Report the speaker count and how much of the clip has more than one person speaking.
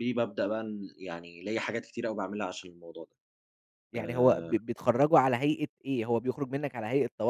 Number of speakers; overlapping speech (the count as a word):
two, about 9%